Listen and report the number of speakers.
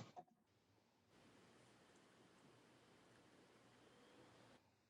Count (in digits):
0